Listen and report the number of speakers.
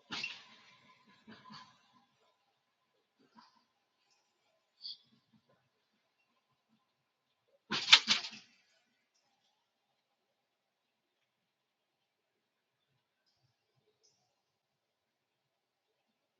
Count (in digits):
0